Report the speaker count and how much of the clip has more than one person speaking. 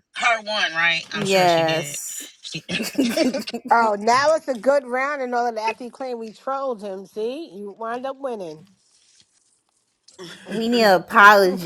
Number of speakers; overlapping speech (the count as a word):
three, about 6%